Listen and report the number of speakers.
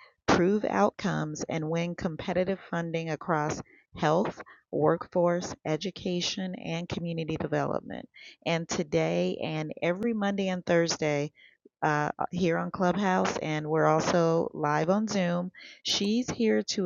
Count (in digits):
1